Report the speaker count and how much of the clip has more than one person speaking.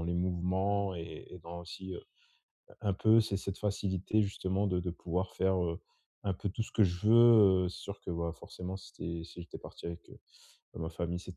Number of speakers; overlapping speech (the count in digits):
1, no overlap